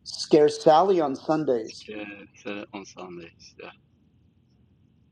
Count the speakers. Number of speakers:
2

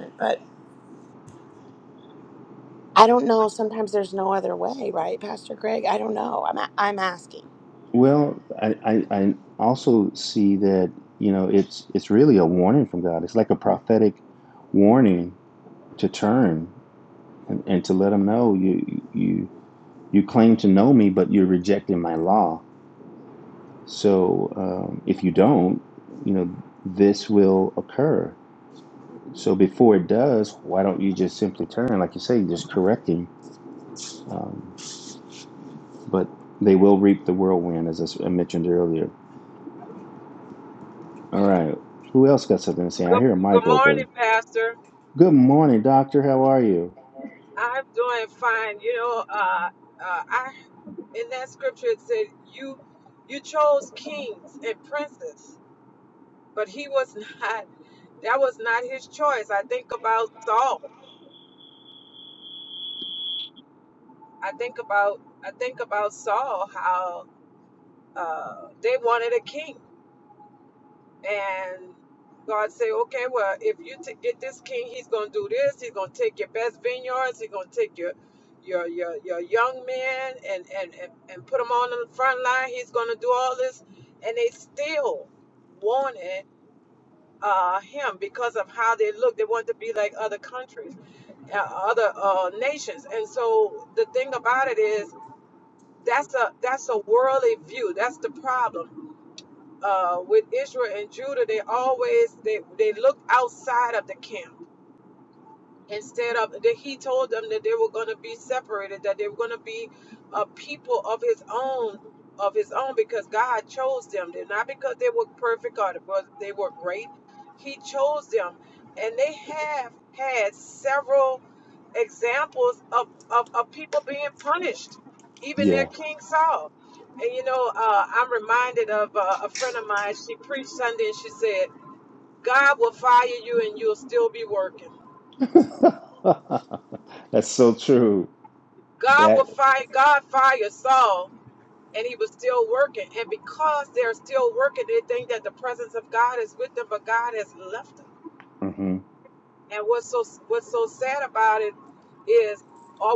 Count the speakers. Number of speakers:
3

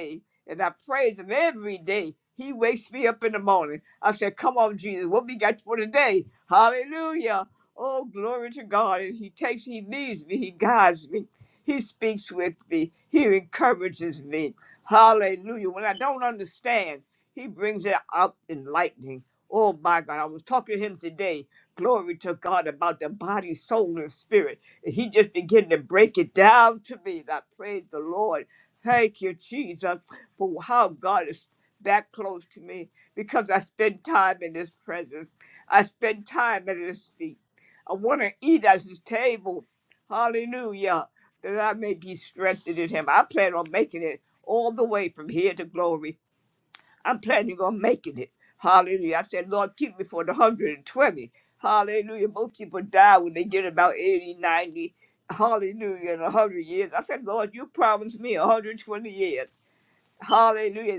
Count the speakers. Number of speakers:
1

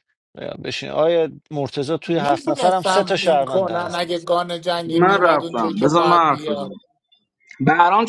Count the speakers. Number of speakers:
3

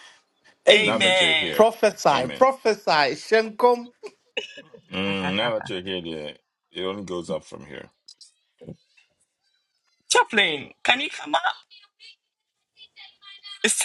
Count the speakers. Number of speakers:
3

